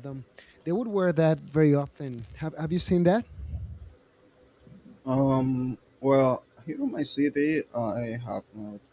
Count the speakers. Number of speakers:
two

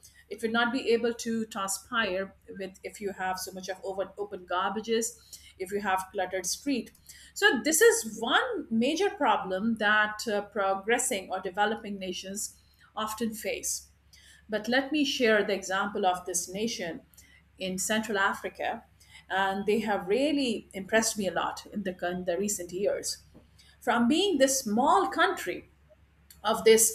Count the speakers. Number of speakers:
one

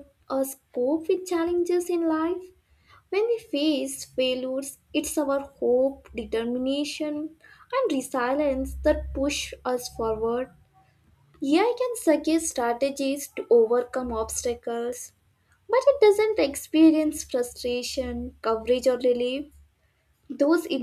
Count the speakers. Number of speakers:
one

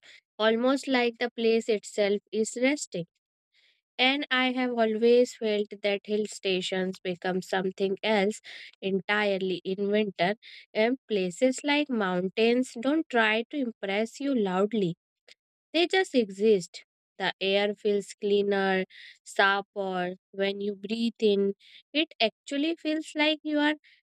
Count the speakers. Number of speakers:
one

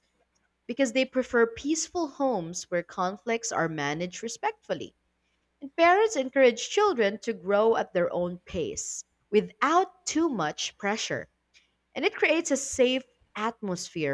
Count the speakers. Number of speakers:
one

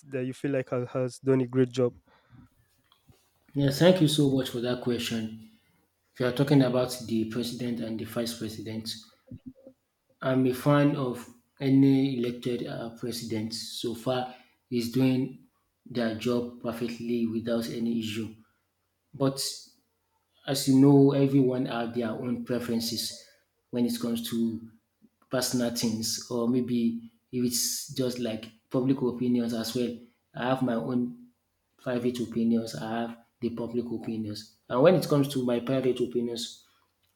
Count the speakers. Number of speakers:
two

